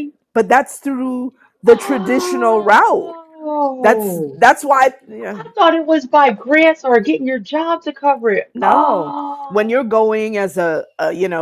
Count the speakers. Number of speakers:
2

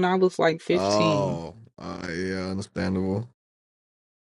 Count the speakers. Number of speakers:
2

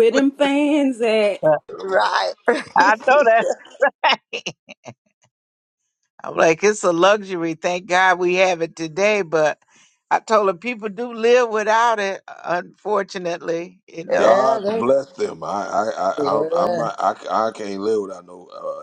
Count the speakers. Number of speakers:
4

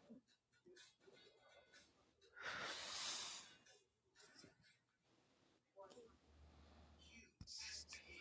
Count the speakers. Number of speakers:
0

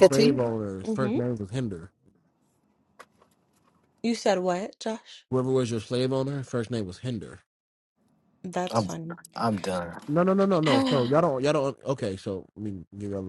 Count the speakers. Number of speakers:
3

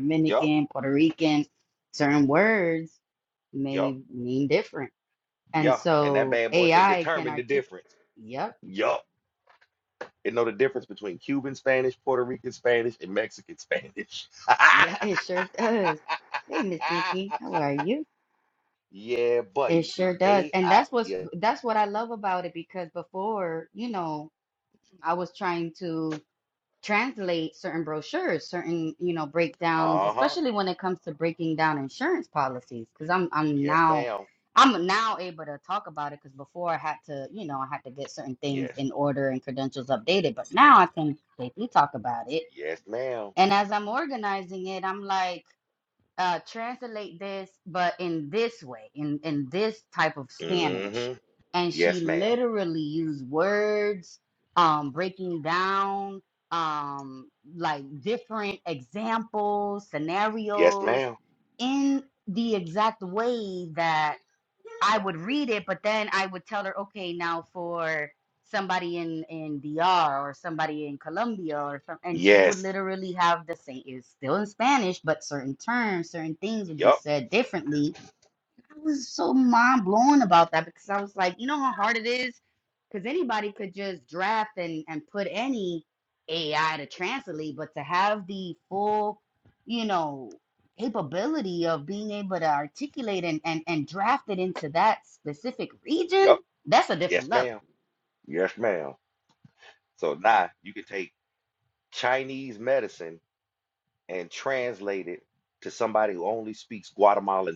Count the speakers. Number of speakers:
2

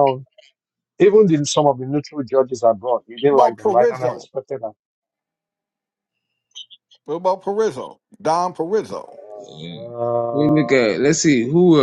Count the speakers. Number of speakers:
3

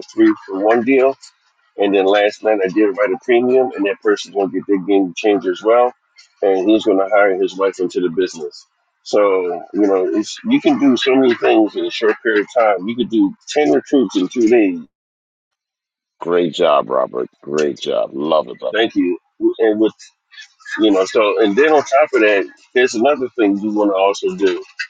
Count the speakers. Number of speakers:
2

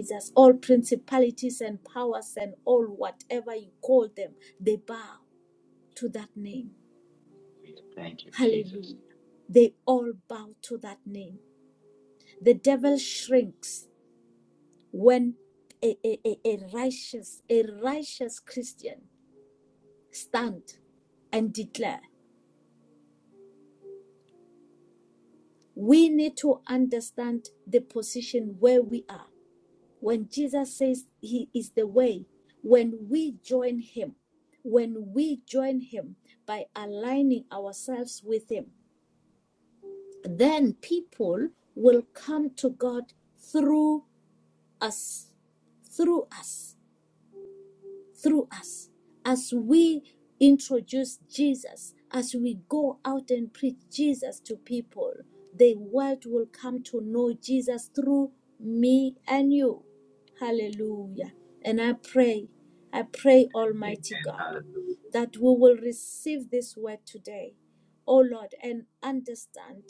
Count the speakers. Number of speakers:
2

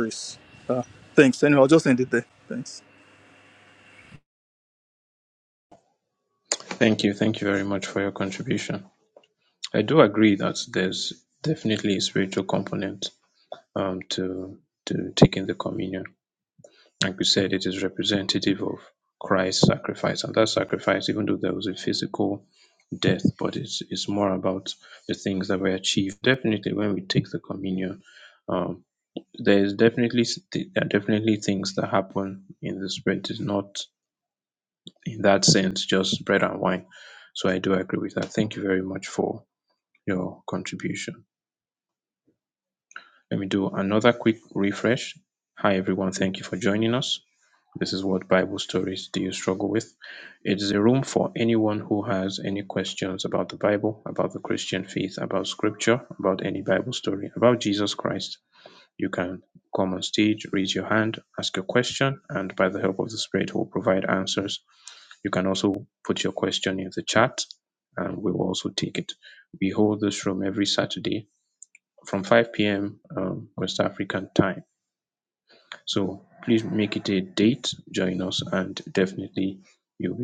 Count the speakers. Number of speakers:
2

